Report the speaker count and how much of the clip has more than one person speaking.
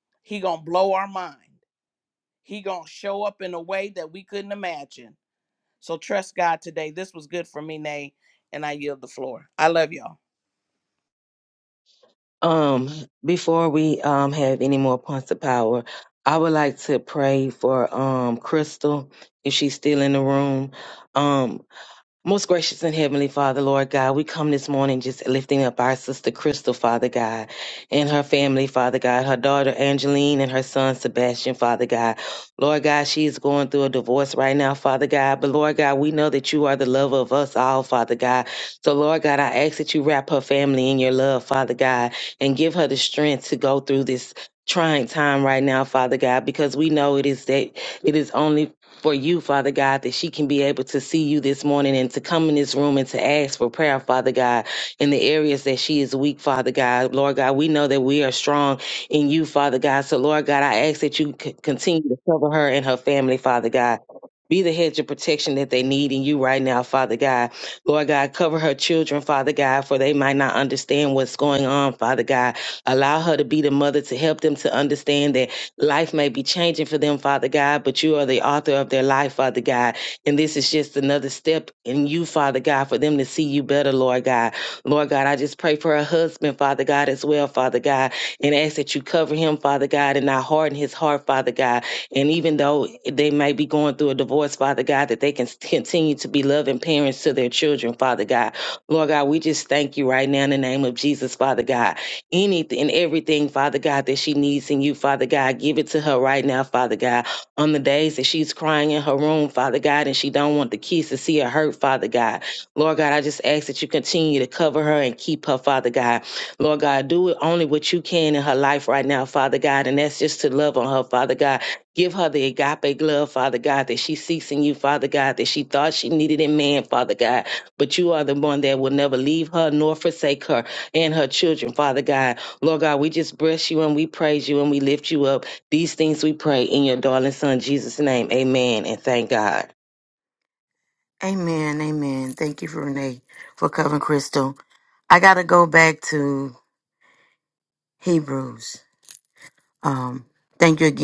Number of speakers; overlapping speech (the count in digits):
3, no overlap